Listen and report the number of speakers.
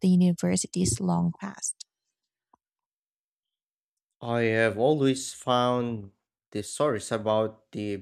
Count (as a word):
two